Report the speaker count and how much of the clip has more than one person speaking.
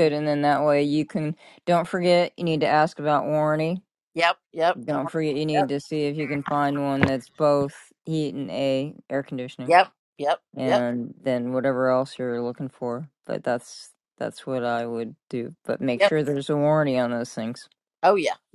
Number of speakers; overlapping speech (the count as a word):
two, about 3%